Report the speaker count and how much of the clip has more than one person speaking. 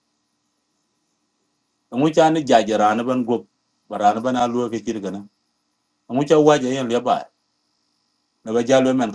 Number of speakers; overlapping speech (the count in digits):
1, no overlap